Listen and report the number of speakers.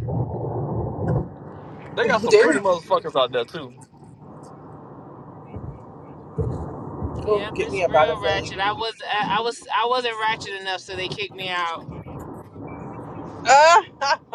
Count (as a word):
three